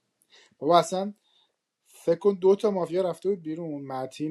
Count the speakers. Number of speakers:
1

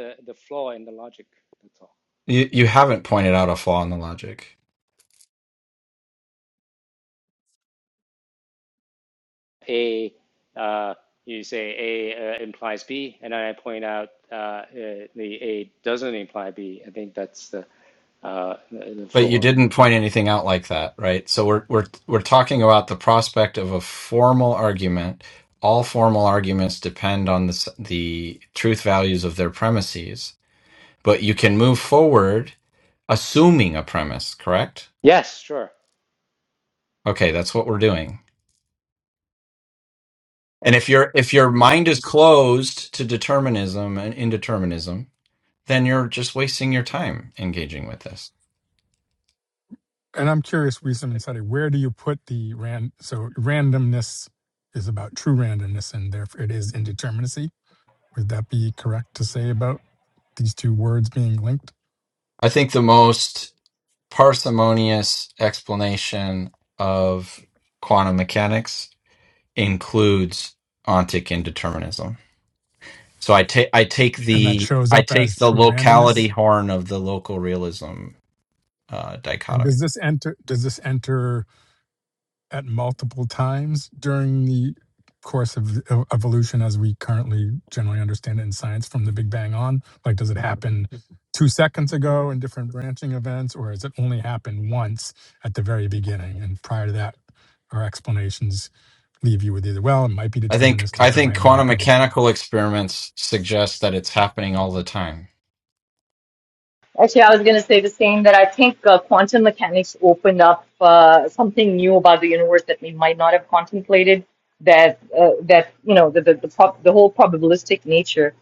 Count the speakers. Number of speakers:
4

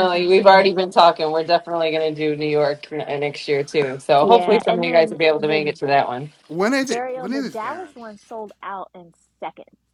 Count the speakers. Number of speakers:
3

